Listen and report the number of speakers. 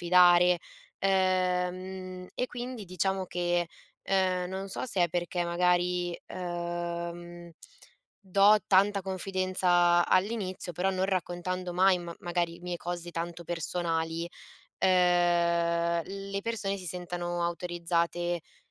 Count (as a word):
one